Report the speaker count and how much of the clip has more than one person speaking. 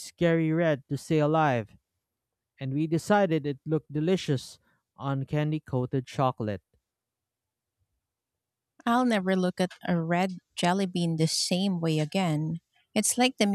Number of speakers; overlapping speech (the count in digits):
2, no overlap